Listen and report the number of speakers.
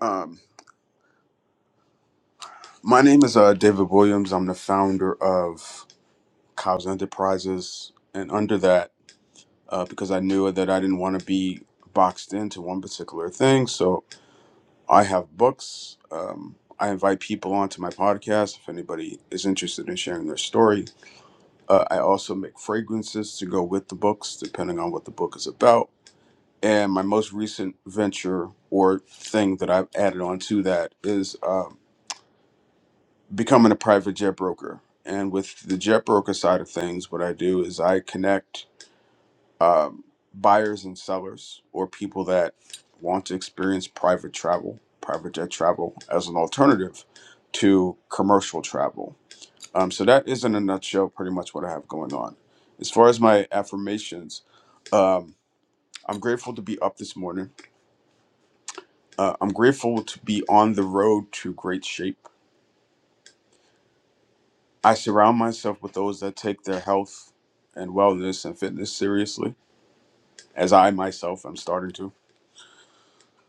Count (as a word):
one